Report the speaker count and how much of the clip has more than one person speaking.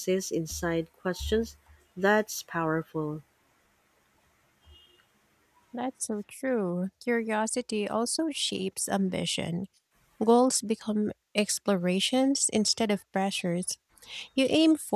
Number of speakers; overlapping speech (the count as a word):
two, no overlap